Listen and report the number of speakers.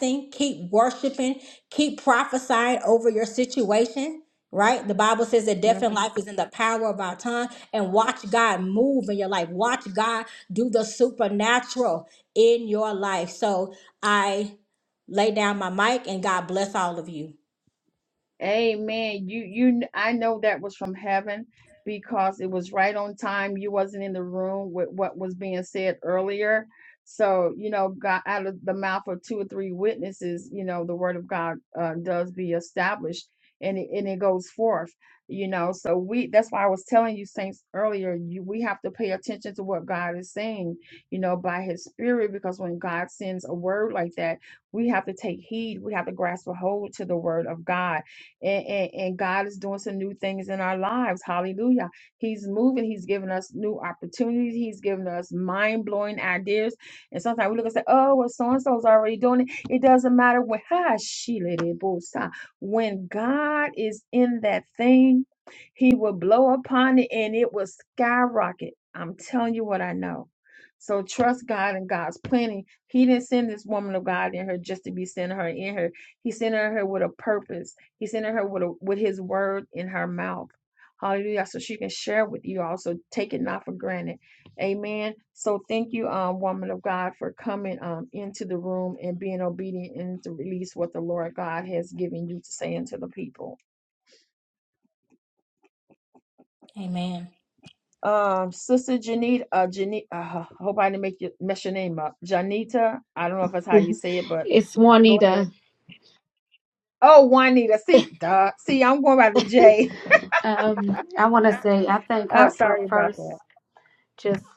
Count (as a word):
three